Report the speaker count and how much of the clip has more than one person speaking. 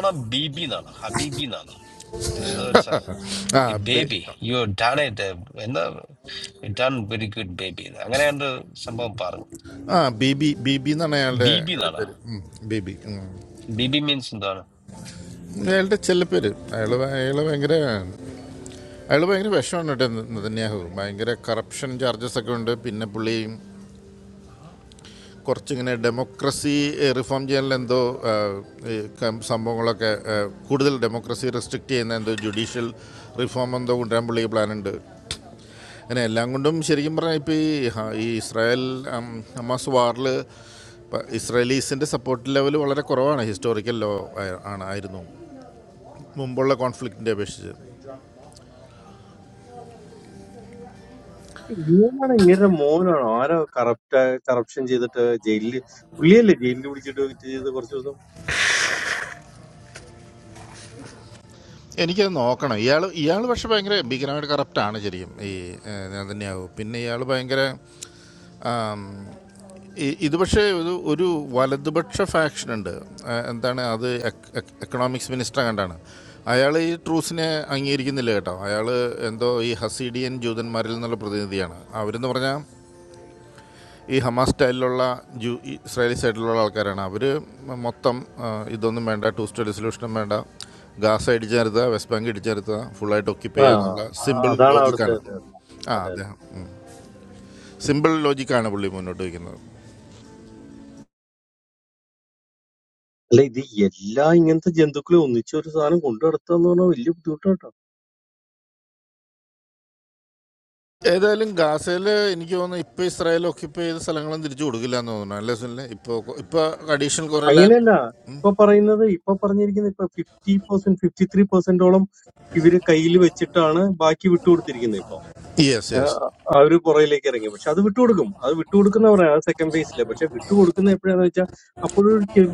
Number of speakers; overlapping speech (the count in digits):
3, about 2%